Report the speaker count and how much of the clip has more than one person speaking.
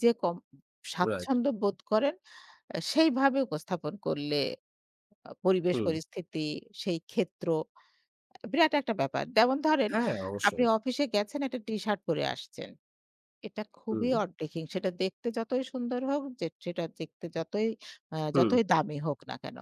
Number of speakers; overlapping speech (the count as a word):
two, about 6%